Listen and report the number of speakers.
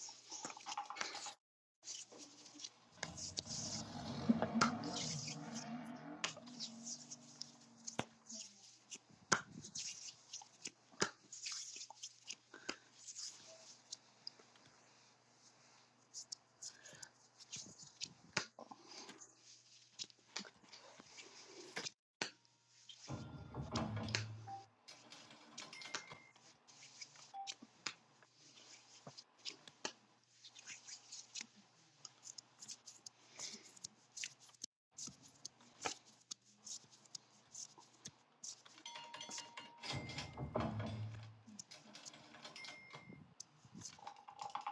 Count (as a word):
zero